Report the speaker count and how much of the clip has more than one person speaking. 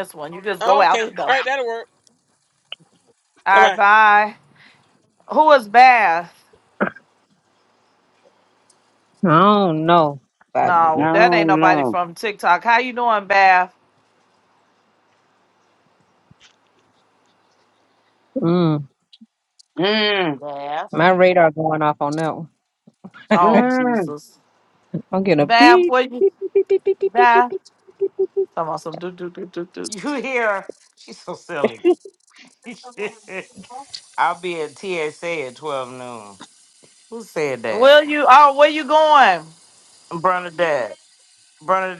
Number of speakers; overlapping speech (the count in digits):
5, about 10%